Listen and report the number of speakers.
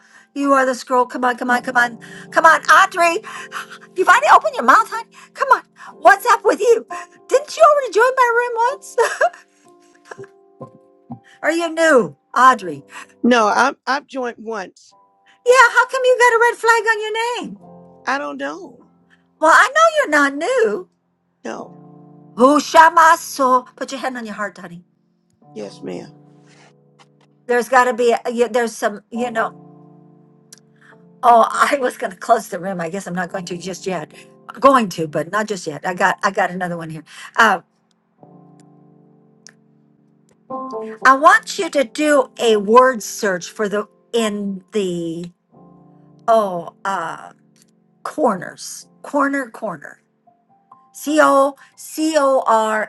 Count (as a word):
two